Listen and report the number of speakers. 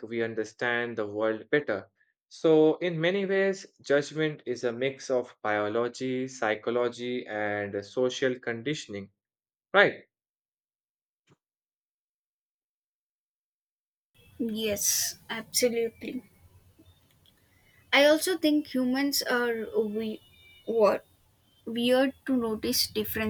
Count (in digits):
2